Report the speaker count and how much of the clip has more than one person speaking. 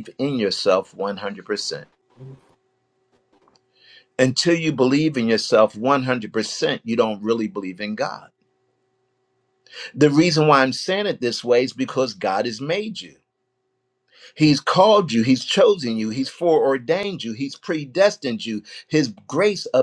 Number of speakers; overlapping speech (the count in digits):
1, no overlap